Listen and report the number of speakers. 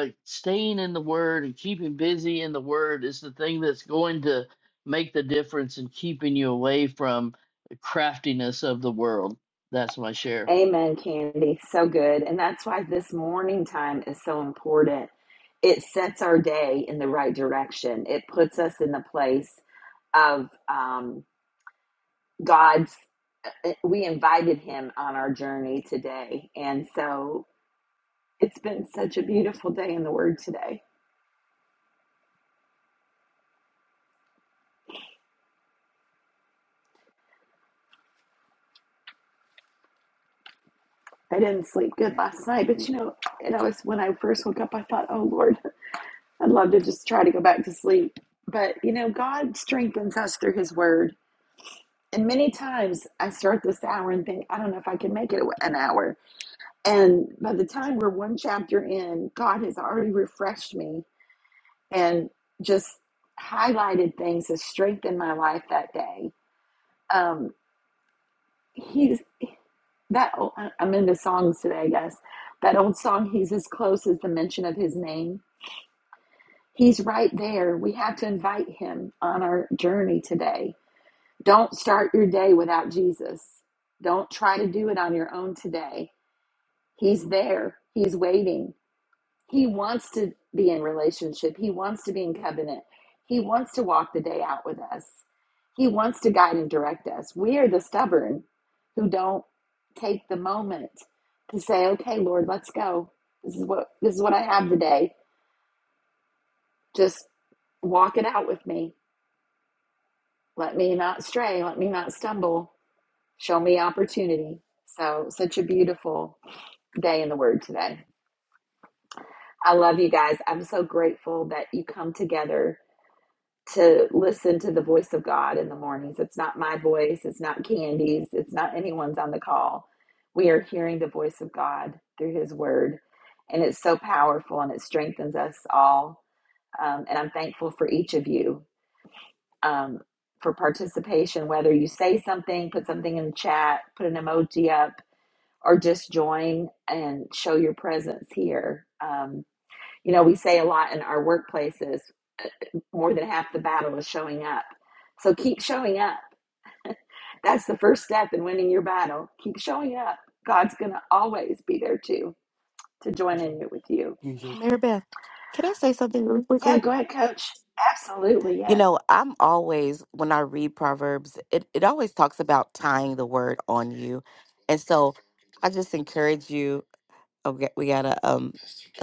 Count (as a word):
three